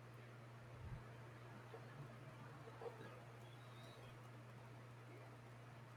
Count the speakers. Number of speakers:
0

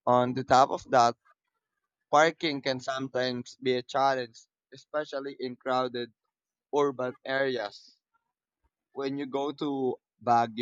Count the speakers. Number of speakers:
1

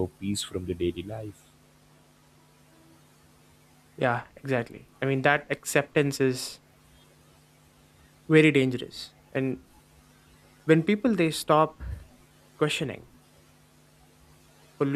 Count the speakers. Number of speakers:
2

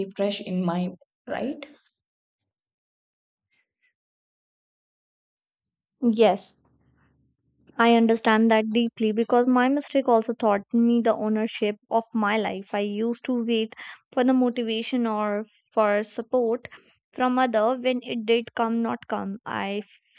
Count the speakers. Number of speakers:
2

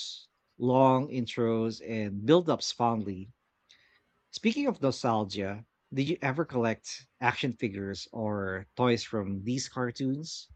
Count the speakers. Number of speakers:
1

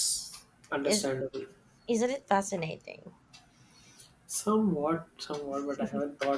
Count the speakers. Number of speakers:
2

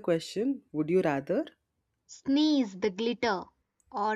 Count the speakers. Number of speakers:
2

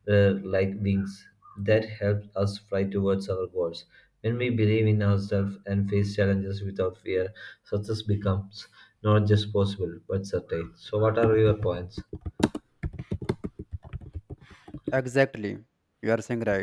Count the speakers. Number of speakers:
2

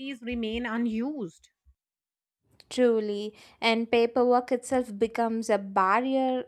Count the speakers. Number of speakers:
2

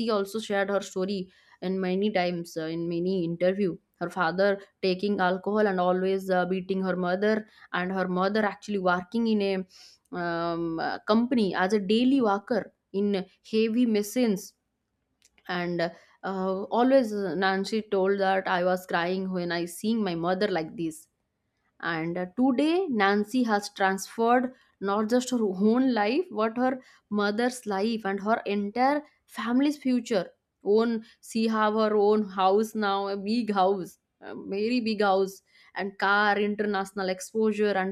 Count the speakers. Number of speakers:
1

